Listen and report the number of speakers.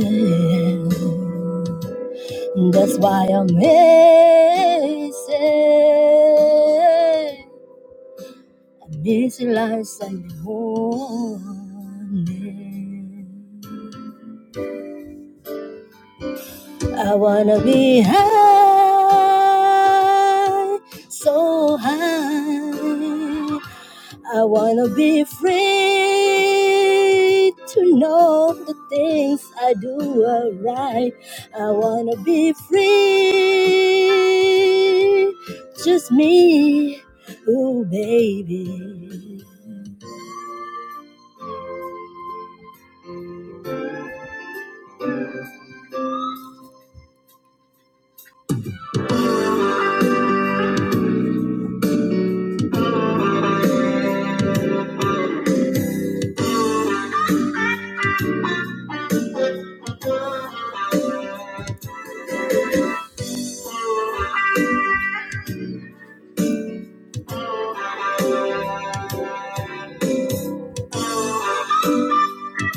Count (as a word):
one